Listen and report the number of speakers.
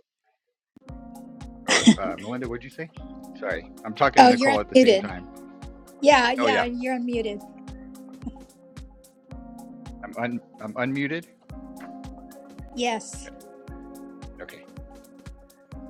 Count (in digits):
2